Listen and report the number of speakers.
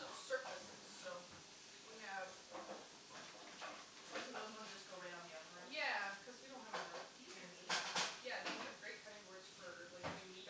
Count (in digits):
2